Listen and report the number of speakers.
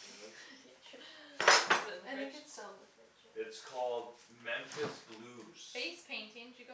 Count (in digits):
3